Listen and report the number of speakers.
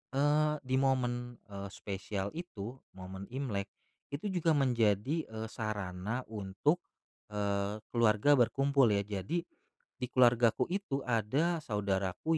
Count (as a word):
one